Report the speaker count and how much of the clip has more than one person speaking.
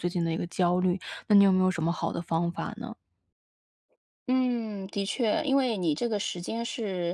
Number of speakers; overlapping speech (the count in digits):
2, no overlap